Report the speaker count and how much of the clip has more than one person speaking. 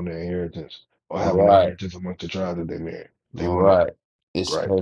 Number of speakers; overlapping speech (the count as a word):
two, about 24%